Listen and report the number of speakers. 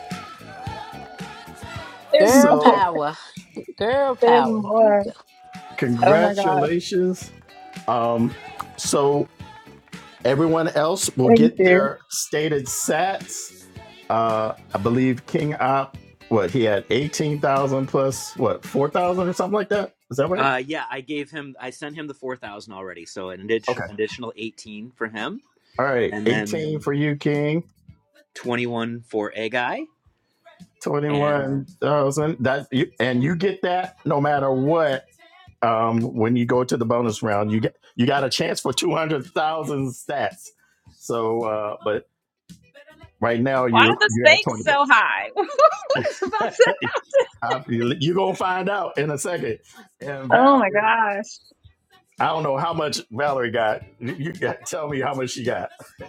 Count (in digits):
4